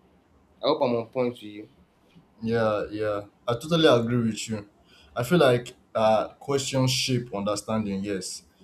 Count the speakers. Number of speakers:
two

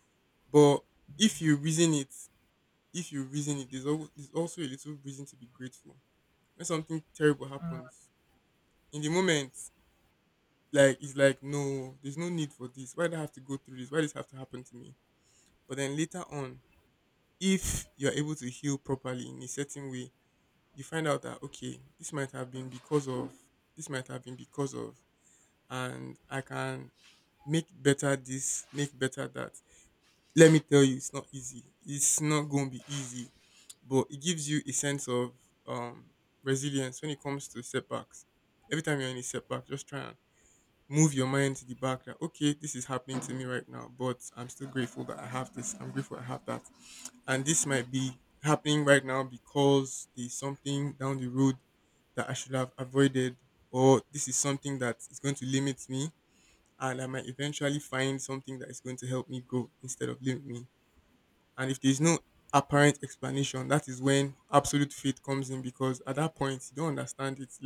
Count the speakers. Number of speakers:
one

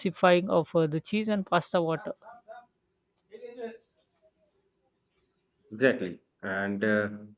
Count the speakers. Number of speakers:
two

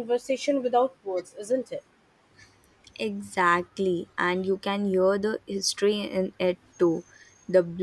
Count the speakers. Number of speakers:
two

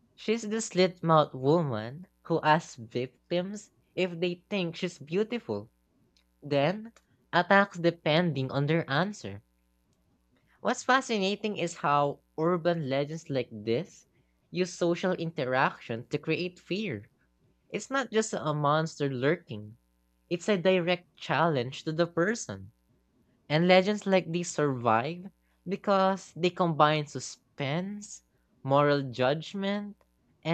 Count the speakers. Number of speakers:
one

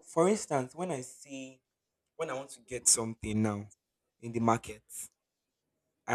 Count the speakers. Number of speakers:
one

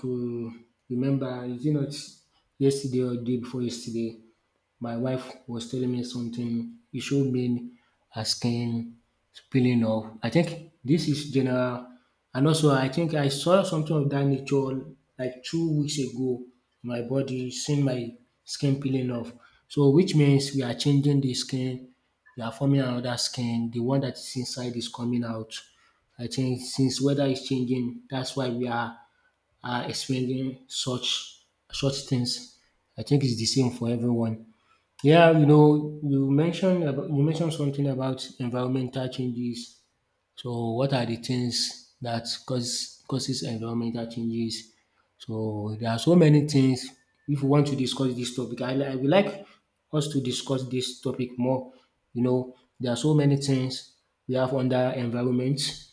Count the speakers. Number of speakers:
one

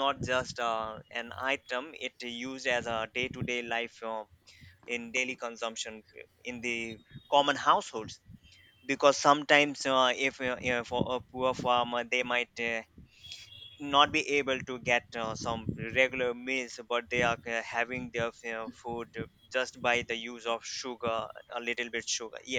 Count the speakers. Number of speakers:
one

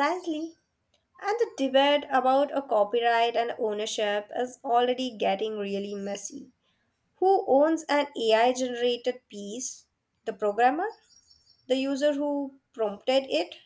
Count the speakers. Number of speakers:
one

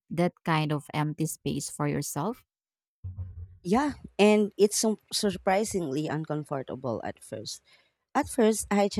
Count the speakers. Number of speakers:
two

